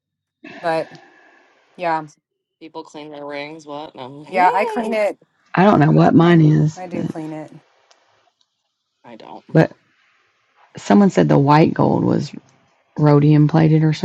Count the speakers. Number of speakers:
3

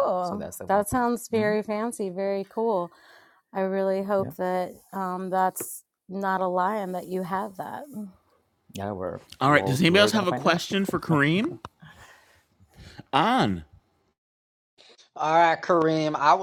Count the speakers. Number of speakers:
4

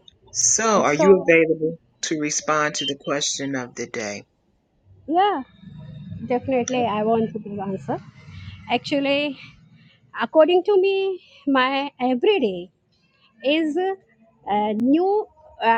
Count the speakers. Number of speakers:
2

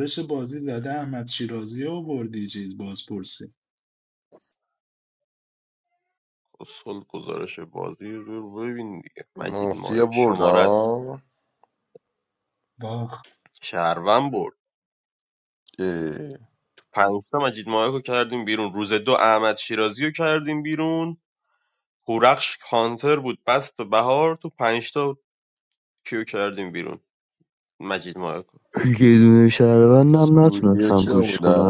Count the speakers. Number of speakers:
4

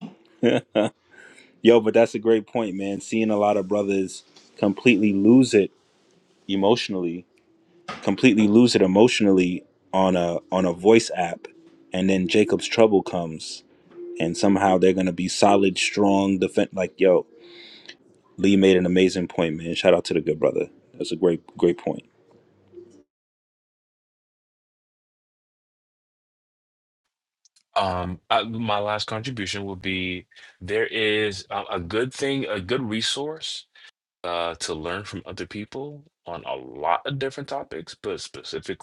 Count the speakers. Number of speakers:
2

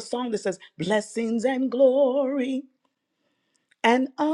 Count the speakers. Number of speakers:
1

